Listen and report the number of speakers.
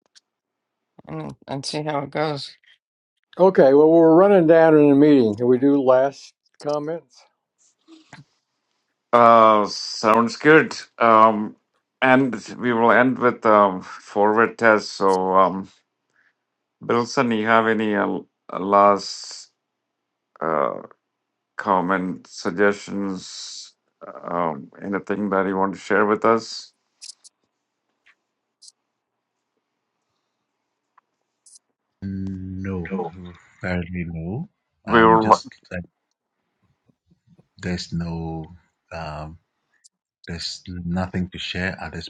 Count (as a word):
four